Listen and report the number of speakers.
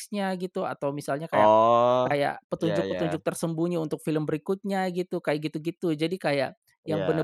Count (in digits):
2